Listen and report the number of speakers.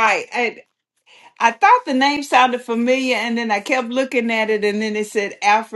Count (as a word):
one